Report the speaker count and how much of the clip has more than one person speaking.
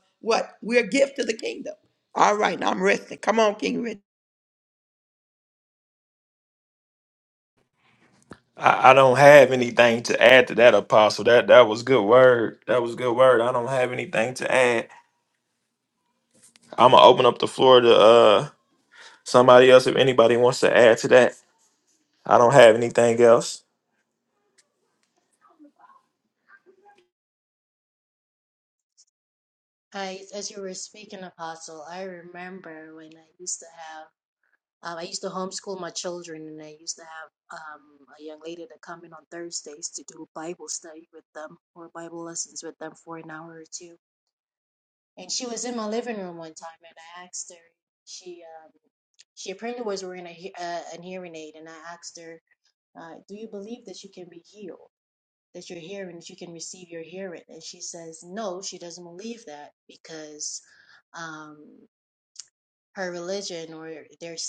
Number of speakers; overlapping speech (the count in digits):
3, no overlap